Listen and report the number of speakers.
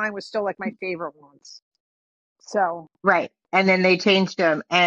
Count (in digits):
2